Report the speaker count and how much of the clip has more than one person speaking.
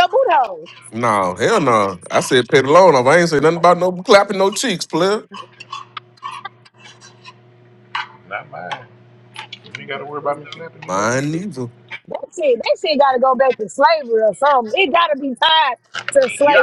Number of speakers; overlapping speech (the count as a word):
three, about 5%